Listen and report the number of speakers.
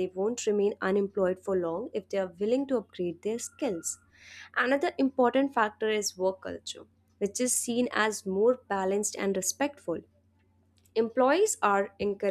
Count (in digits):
1